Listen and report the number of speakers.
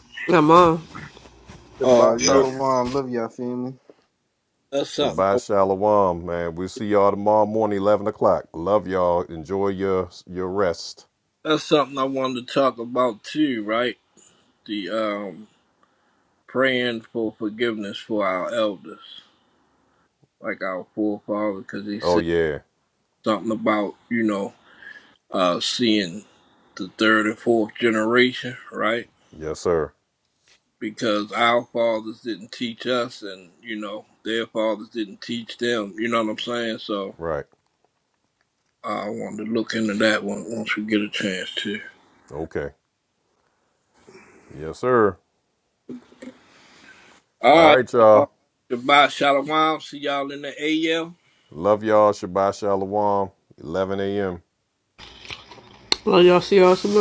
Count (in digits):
4